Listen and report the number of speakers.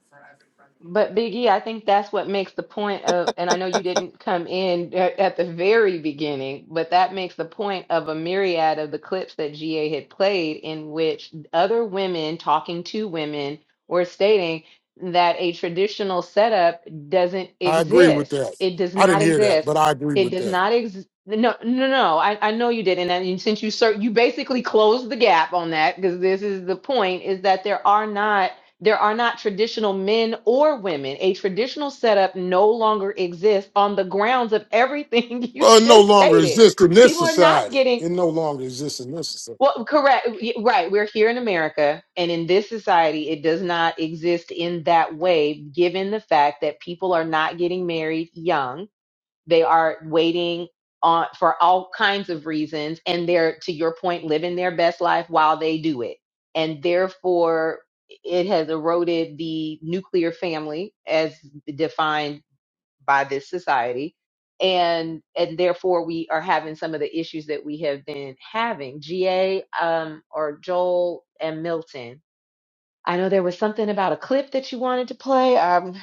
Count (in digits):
2